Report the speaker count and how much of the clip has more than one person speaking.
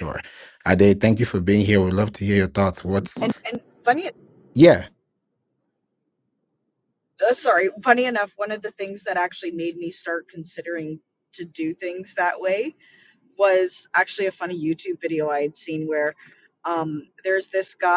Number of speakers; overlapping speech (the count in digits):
2, about 1%